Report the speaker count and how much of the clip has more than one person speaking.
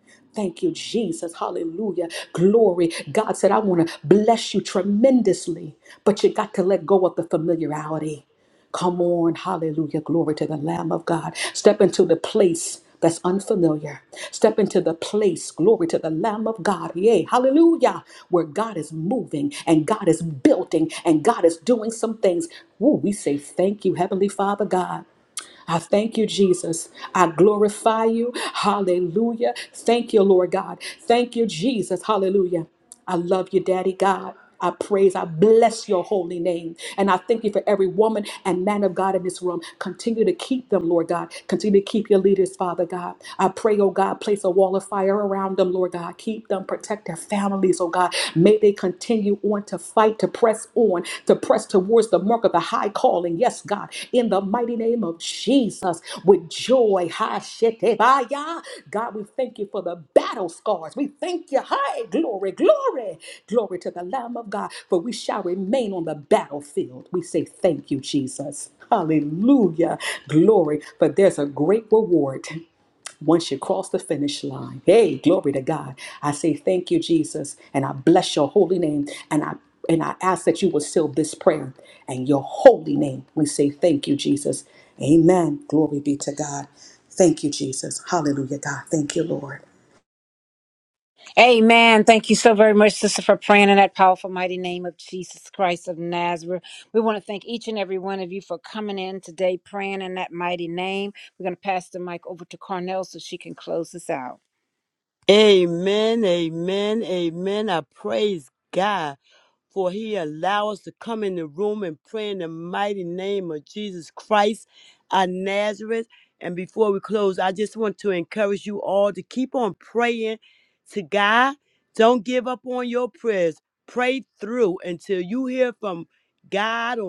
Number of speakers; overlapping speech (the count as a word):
three, no overlap